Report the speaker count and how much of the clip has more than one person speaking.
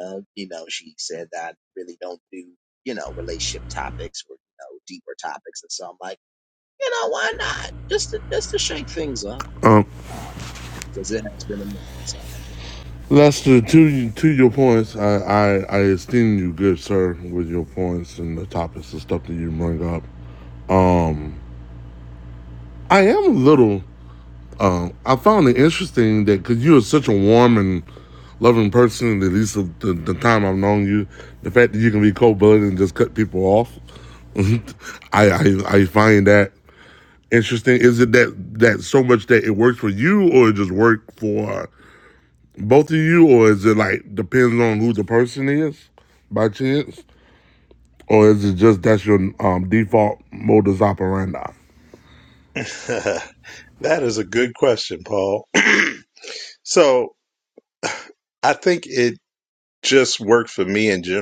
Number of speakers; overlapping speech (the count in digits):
3, no overlap